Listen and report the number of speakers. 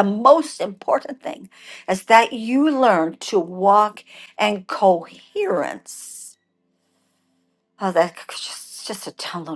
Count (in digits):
1